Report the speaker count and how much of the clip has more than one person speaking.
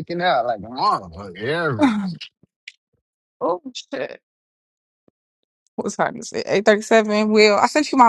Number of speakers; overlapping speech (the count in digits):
2, no overlap